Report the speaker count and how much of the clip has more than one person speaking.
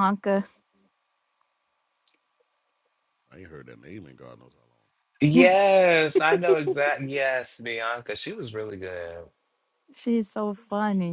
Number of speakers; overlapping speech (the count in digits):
3, no overlap